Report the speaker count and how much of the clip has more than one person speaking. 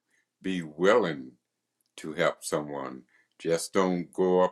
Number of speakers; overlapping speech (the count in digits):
1, no overlap